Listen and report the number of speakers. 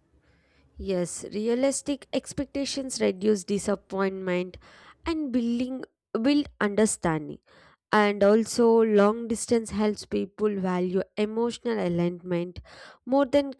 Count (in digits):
1